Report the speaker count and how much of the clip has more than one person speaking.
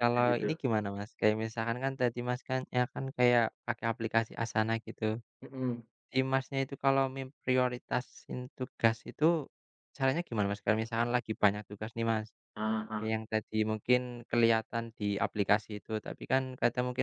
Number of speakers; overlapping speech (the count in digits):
2, about 2%